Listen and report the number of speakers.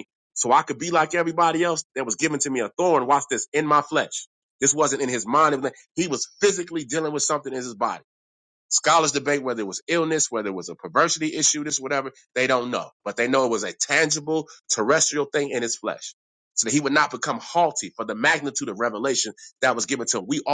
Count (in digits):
1